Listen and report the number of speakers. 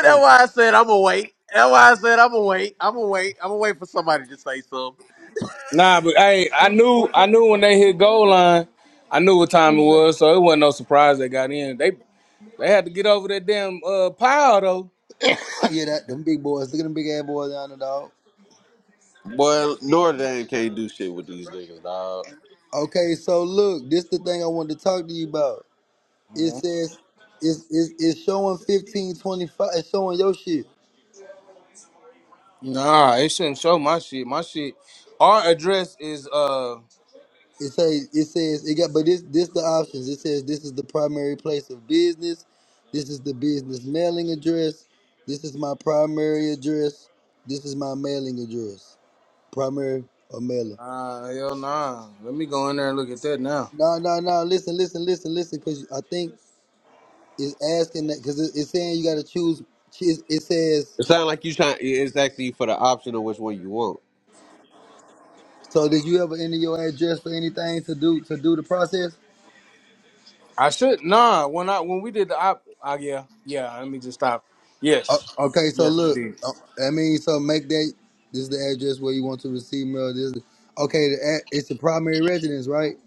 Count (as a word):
three